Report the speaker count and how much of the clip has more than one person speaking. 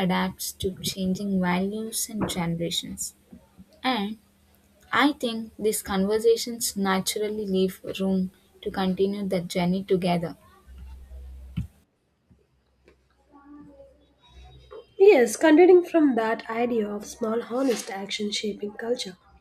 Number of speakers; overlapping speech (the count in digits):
2, no overlap